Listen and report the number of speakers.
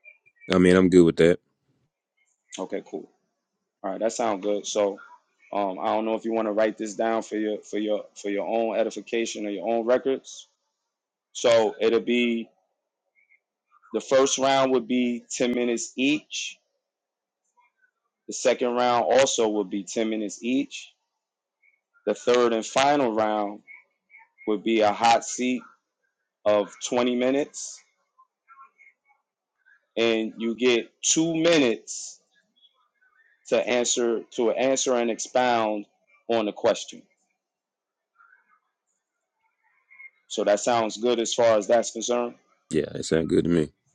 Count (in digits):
2